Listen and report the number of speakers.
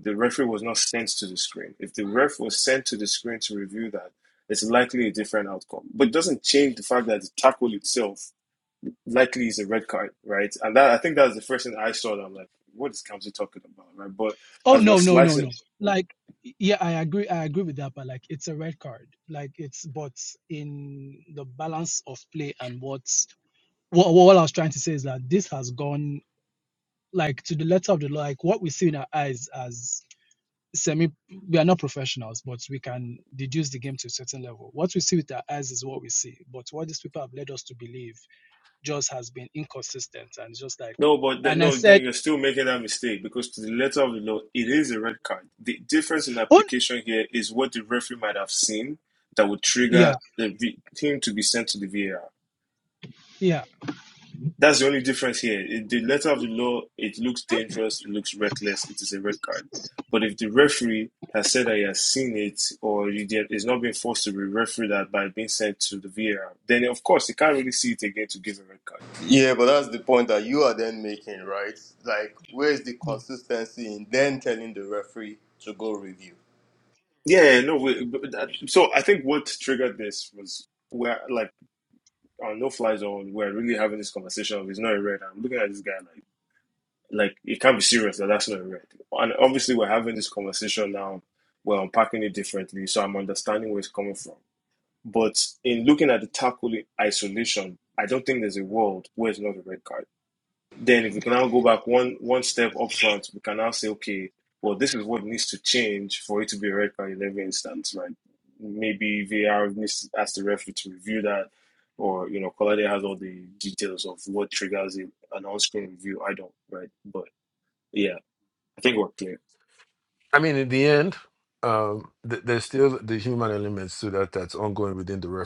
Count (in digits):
4